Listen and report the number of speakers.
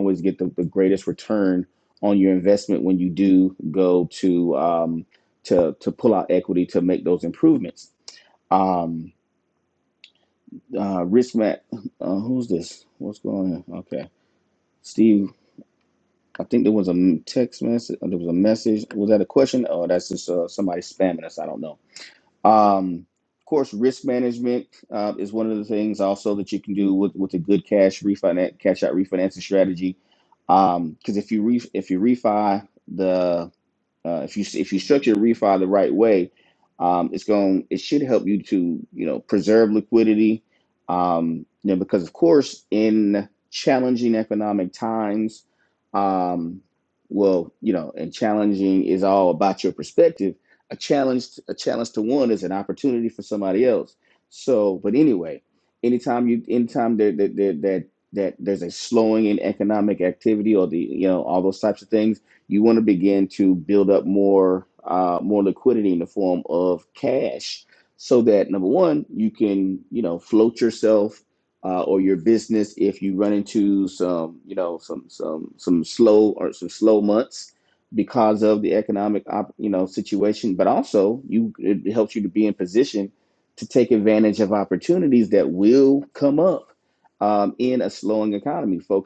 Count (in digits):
1